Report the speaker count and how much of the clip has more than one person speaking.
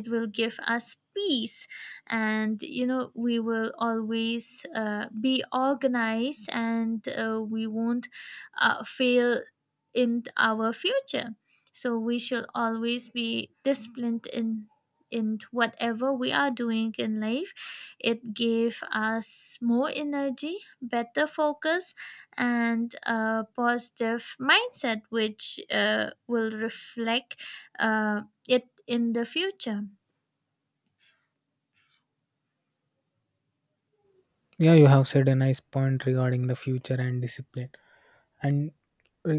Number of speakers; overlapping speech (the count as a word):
two, no overlap